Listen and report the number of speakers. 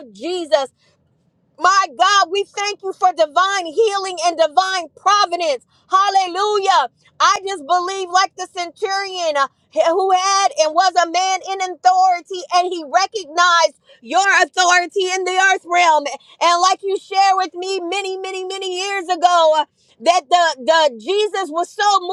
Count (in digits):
1